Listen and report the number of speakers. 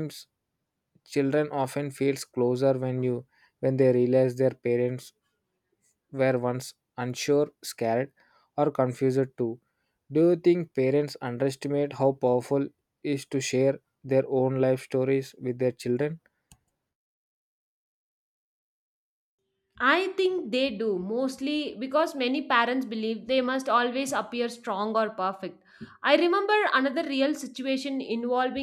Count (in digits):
2